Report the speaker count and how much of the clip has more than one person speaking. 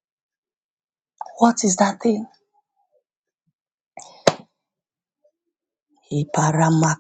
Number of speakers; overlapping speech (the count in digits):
1, no overlap